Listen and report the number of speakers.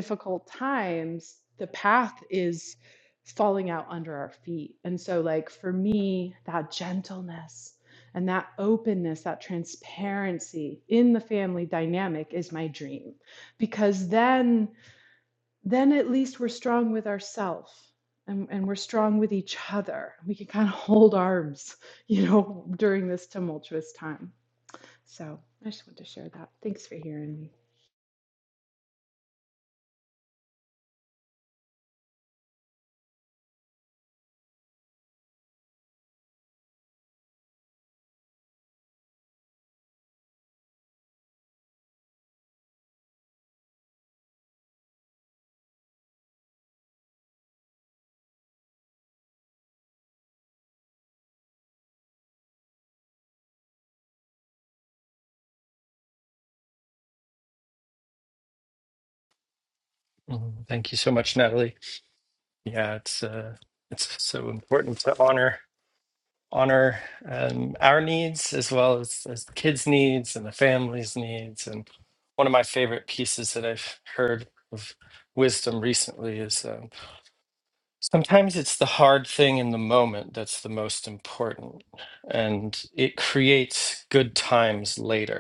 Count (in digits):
2